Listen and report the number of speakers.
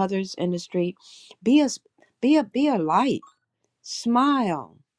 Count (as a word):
one